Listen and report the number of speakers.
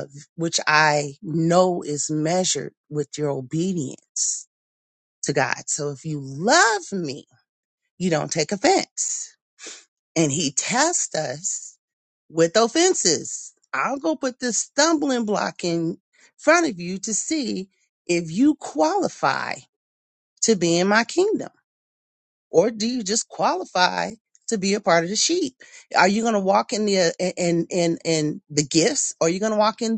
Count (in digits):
1